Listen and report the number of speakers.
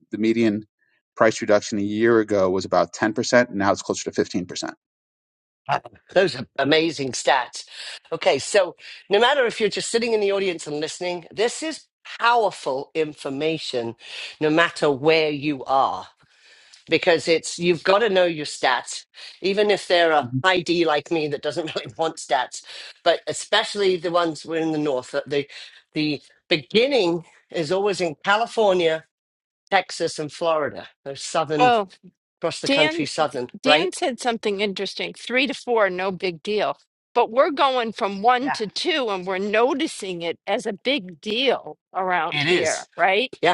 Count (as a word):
three